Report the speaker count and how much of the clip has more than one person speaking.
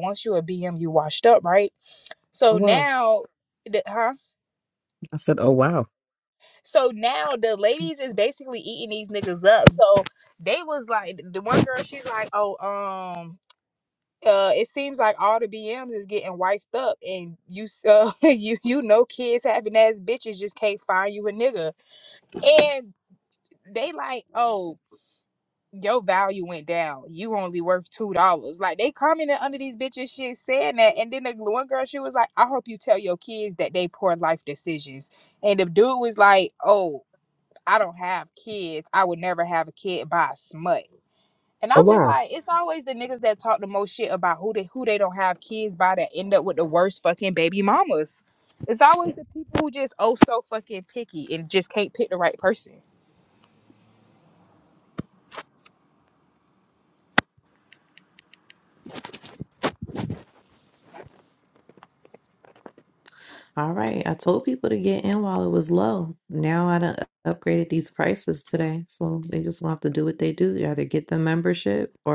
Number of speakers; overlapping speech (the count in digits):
3, about 1%